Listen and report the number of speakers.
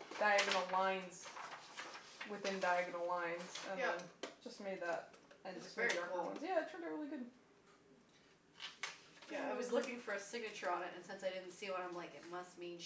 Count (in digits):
2